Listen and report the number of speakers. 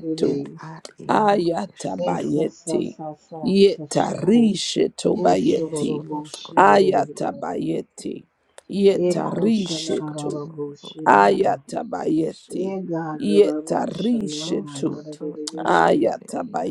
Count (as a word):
three